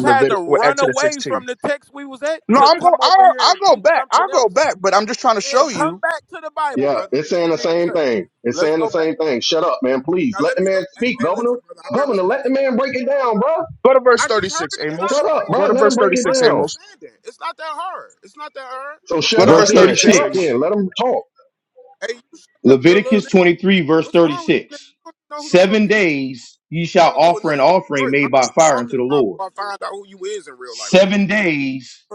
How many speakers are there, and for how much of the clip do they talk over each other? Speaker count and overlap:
4, about 49%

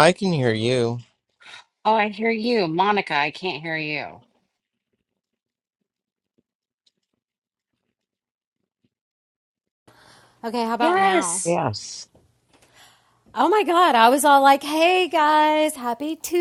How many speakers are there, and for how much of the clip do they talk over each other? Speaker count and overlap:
3, about 3%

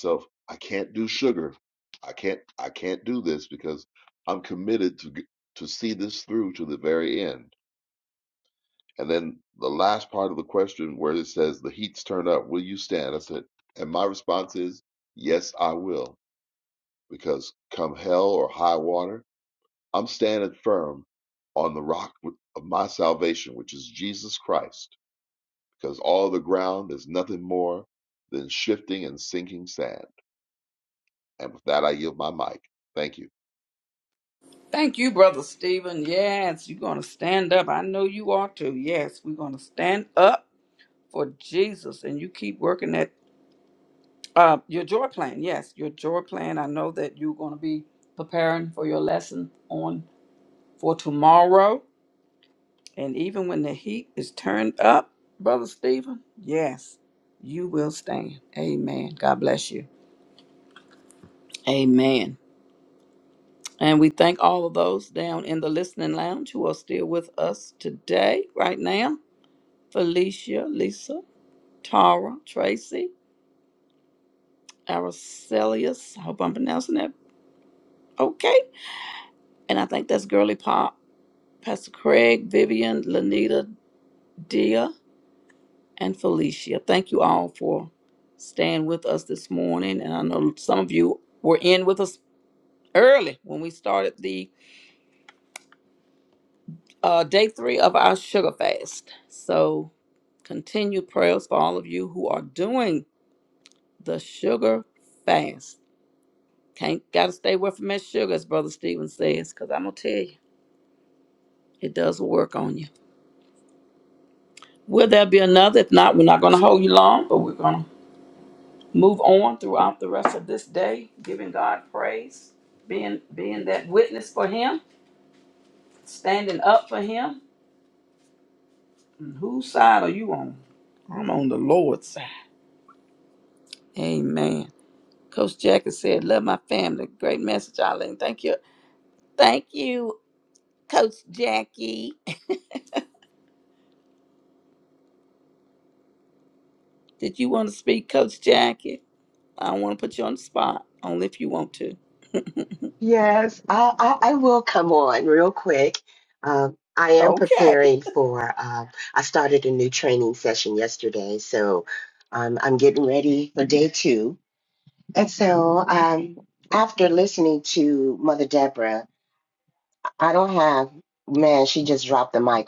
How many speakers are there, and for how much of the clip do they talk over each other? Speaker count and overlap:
3, under 1%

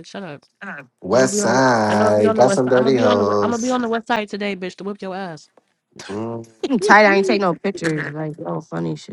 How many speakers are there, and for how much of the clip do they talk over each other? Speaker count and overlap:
3, about 35%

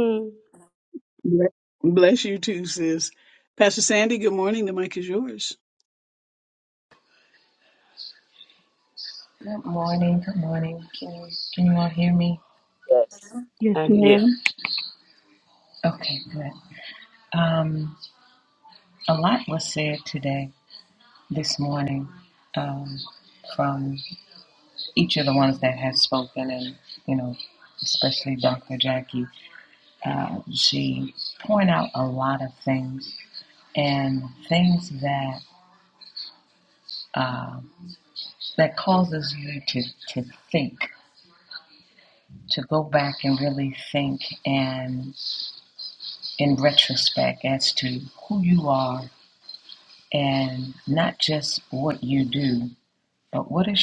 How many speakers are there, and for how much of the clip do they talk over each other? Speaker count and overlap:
3, about 1%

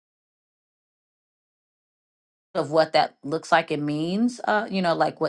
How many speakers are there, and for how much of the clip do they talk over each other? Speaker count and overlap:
1, no overlap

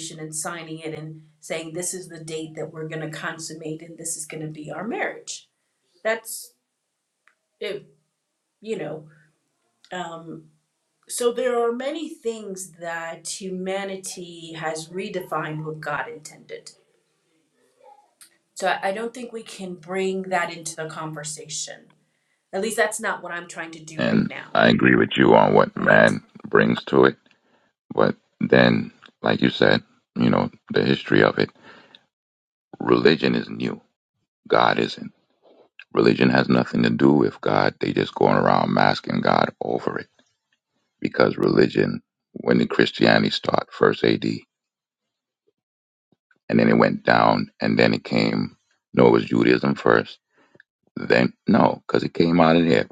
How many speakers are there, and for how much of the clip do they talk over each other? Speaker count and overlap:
2, about 2%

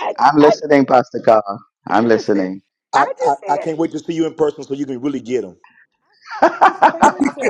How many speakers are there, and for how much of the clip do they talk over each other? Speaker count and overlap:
3, about 24%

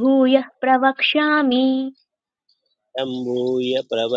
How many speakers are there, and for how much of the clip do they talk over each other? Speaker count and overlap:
2, no overlap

